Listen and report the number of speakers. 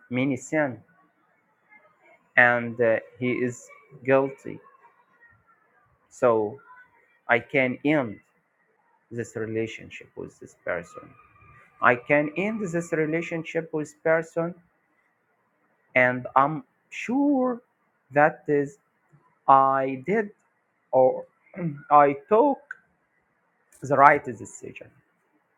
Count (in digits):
1